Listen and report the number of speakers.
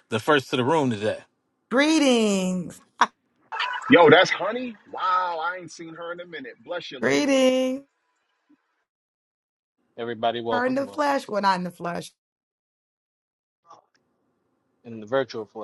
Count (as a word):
four